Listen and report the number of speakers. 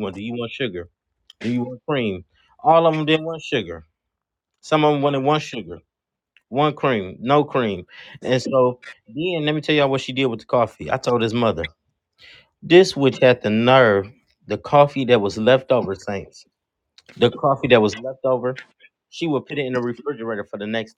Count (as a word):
one